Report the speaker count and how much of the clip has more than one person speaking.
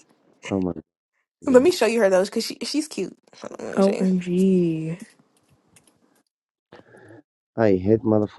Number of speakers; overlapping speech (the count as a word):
three, about 7%